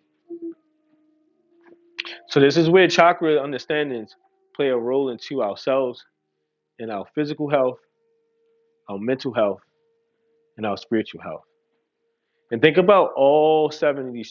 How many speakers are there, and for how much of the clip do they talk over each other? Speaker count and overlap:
one, no overlap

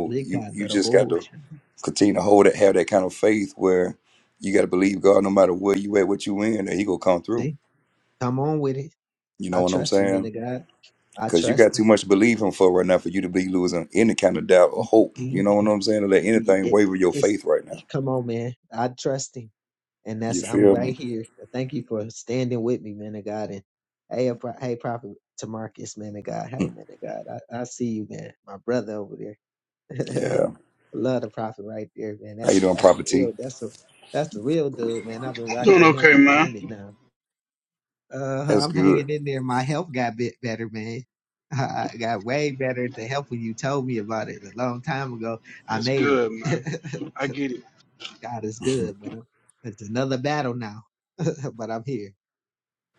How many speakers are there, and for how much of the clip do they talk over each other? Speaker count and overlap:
three, about 14%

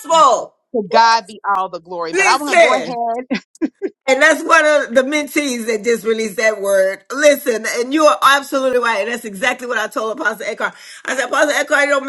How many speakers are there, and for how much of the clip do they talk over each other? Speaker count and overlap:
two, about 7%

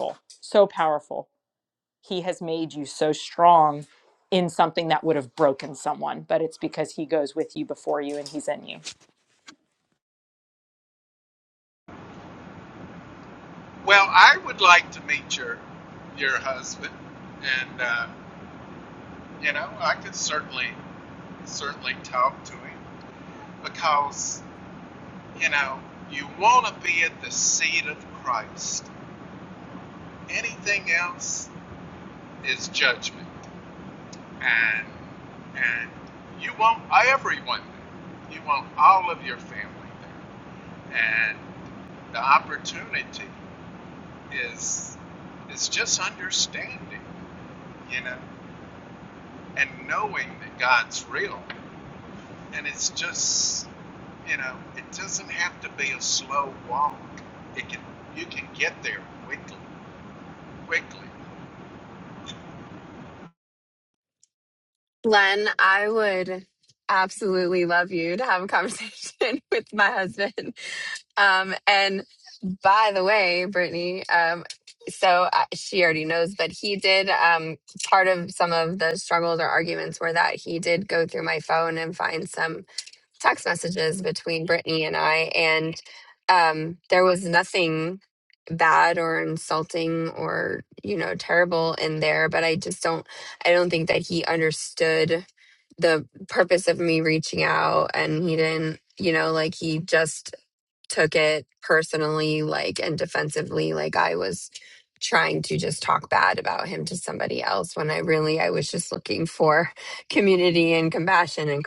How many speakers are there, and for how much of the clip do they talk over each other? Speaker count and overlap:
three, no overlap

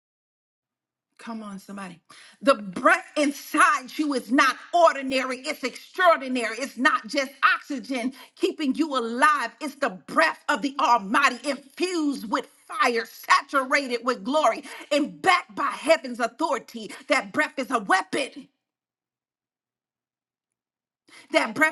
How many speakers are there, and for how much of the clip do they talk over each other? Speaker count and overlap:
one, no overlap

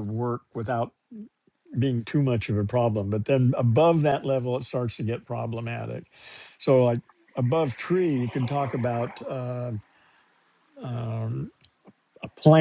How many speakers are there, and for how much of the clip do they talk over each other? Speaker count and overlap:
one, no overlap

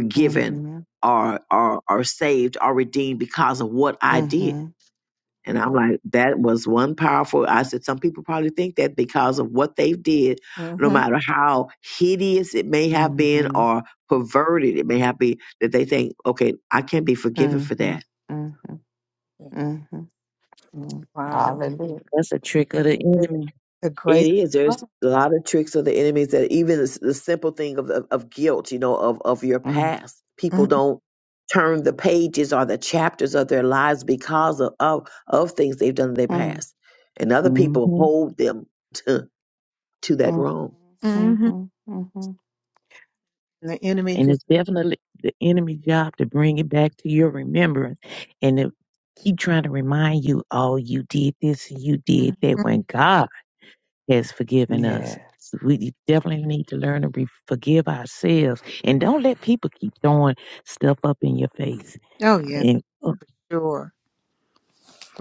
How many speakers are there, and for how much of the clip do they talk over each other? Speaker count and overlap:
four, about 9%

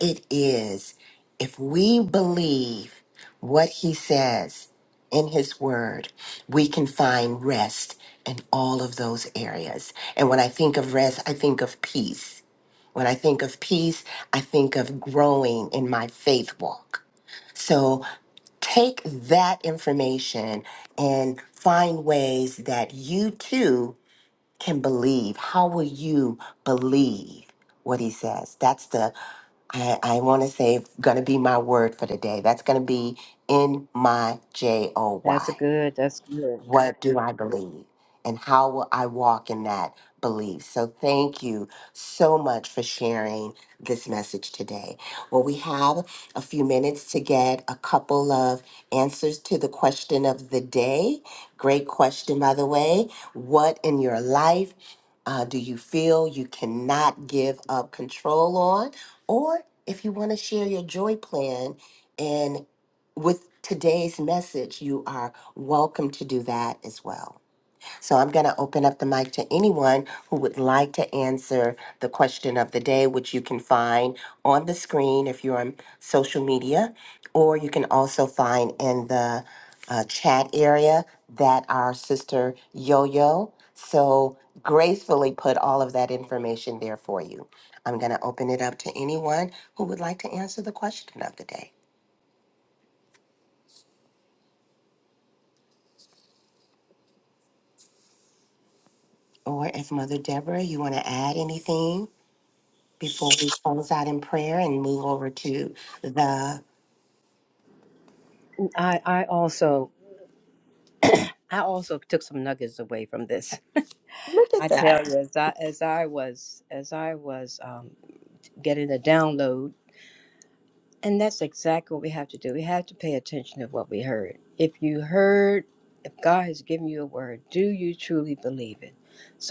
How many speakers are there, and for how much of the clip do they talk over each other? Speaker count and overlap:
two, about 1%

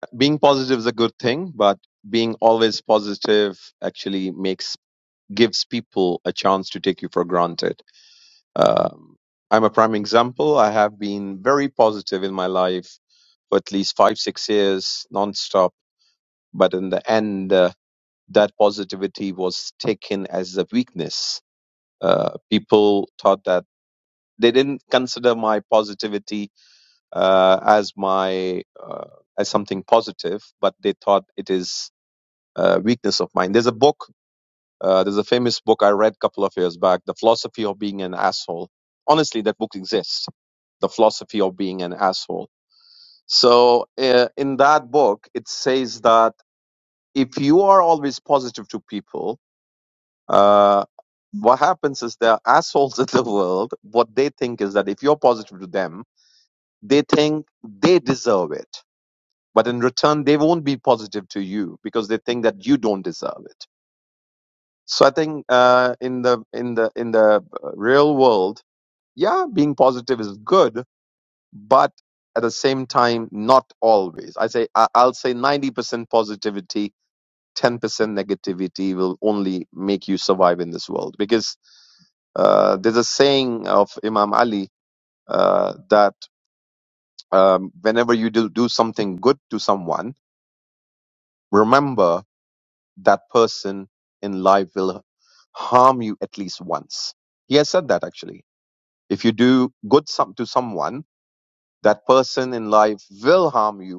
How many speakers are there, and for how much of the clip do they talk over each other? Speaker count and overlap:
one, no overlap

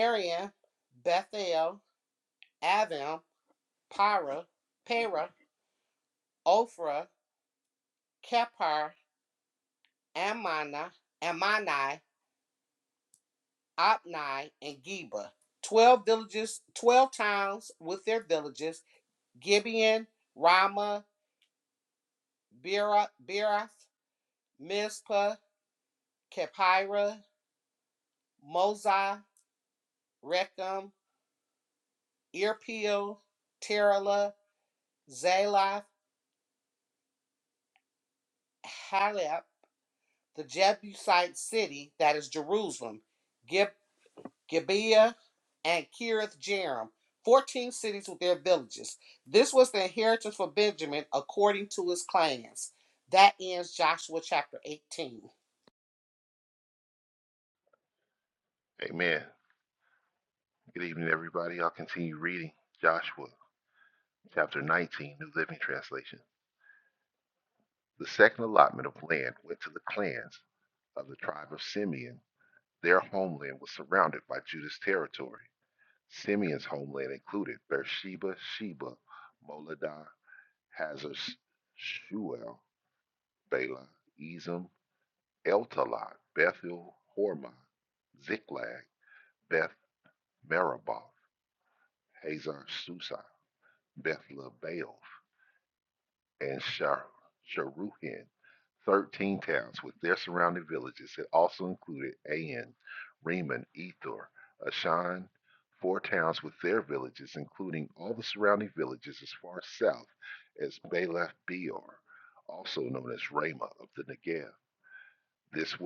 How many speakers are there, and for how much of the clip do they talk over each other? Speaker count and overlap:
two, no overlap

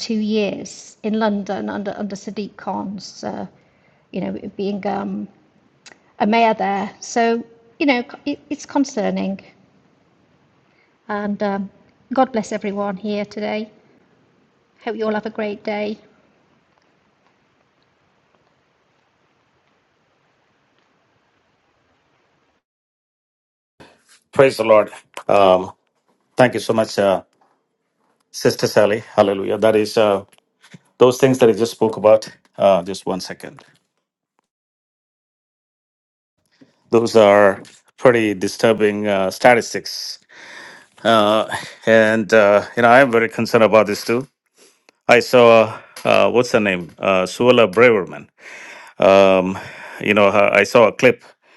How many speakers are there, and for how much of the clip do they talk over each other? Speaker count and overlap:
two, no overlap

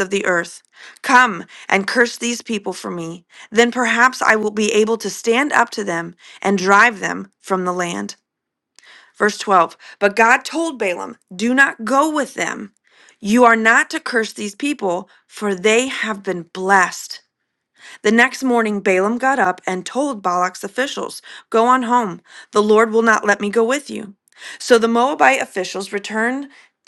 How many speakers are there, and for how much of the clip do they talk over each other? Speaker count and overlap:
one, no overlap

